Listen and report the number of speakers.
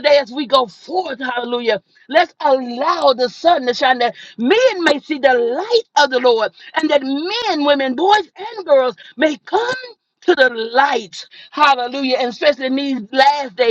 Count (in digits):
1